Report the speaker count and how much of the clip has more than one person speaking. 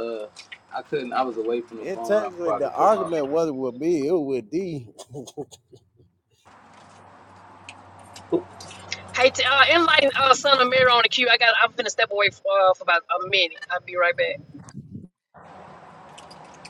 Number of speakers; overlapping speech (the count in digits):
3, about 8%